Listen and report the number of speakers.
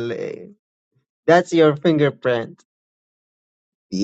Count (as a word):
one